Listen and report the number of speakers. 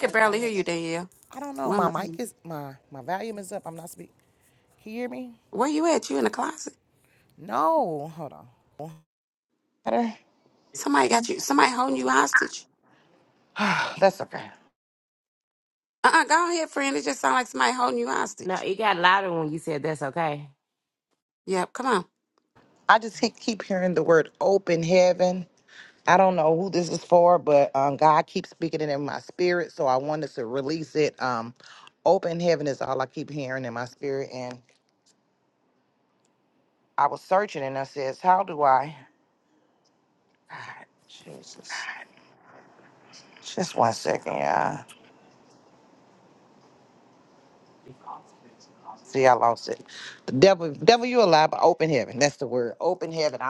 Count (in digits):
3